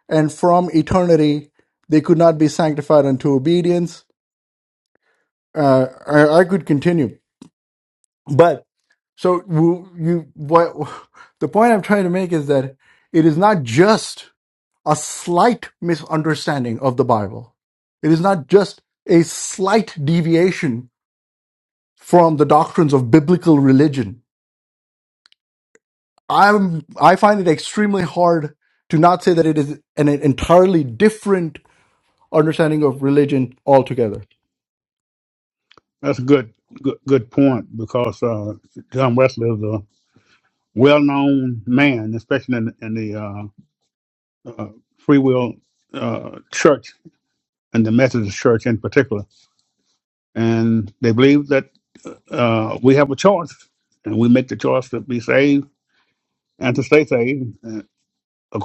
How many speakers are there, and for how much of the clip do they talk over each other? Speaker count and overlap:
two, no overlap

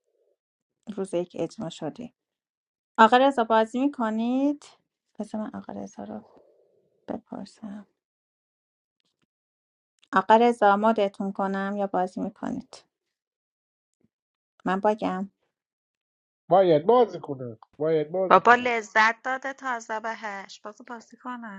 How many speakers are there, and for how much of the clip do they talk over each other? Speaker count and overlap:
three, about 2%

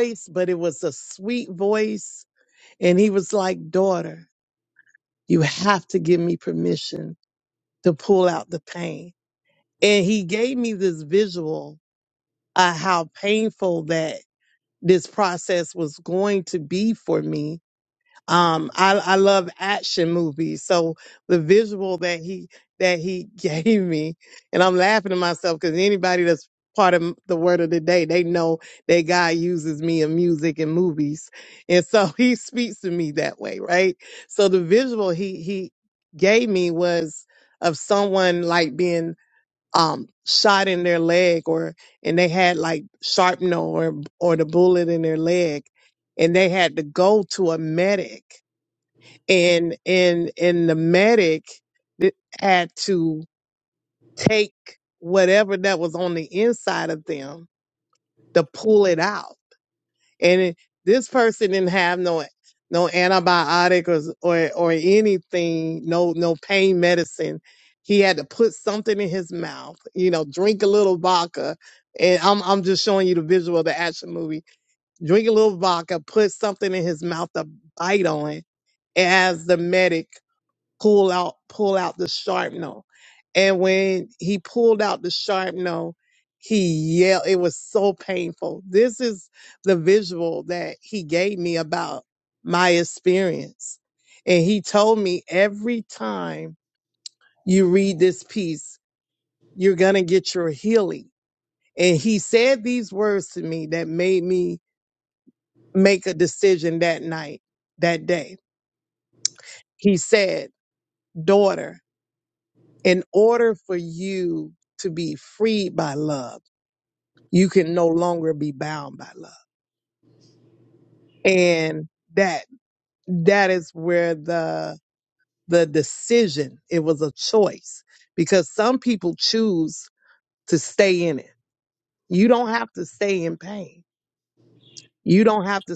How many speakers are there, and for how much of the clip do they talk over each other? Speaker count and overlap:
one, no overlap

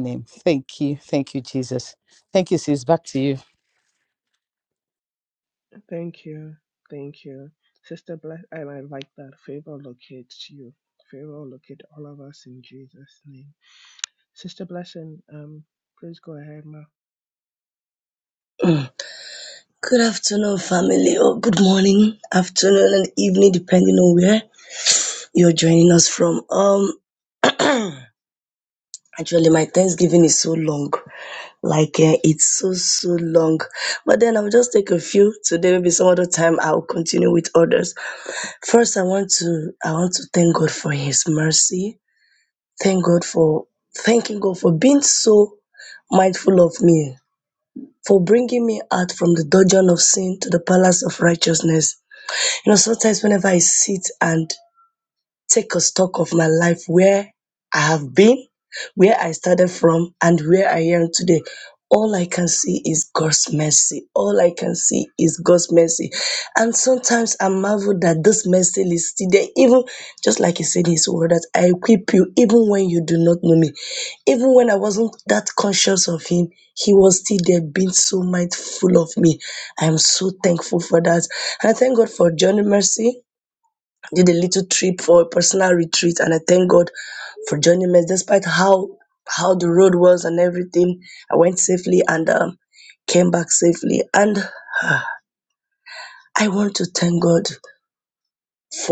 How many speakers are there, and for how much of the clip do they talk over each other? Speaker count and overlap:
three, no overlap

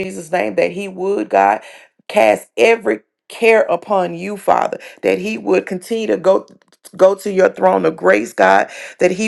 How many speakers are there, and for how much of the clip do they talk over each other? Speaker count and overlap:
one, no overlap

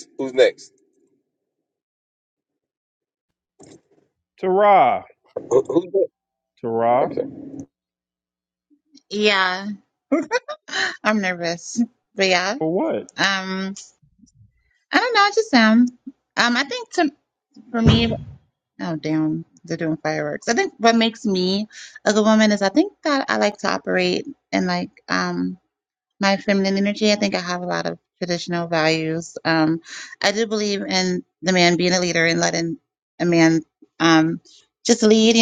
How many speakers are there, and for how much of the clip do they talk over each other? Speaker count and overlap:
three, under 1%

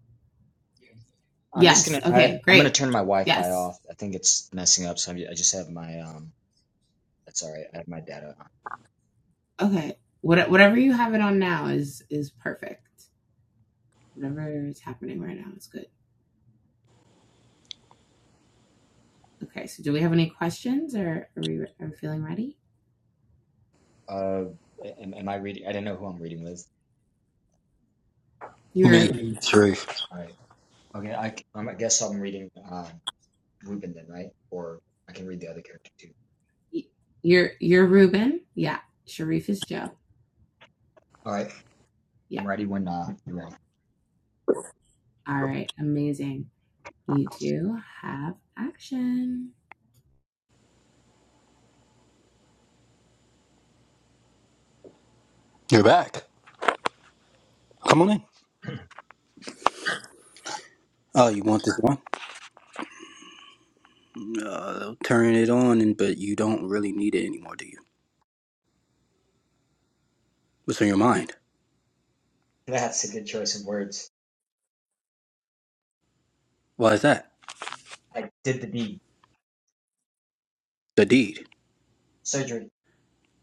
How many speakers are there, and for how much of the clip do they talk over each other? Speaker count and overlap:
three, about 2%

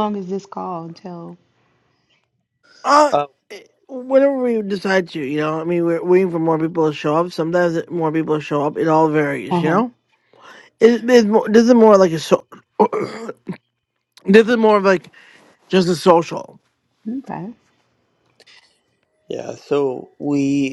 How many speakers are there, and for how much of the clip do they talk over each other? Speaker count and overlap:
three, about 2%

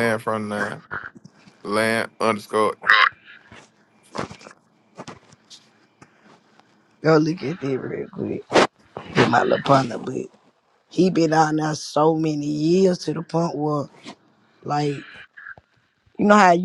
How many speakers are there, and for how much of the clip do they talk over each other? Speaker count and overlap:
two, no overlap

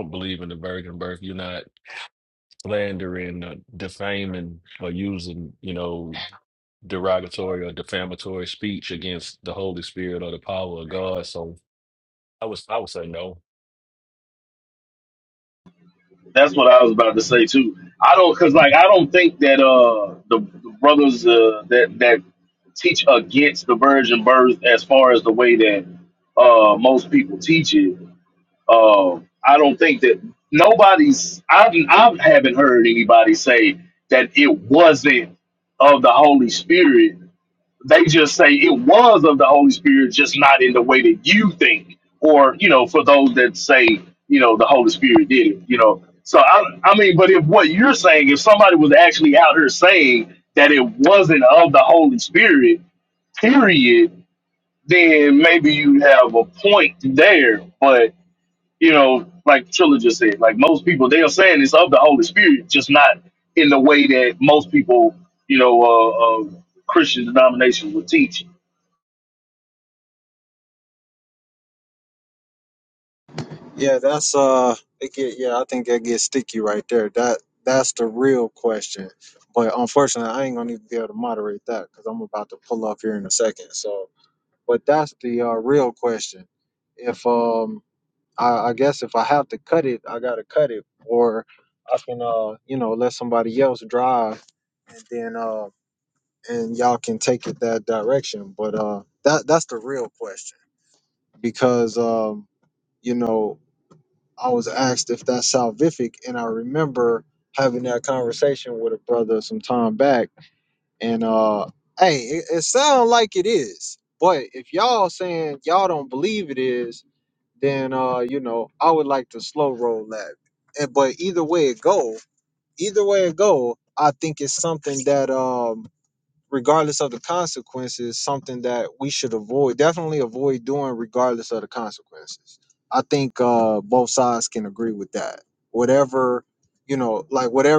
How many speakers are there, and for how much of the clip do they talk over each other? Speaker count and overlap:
three, no overlap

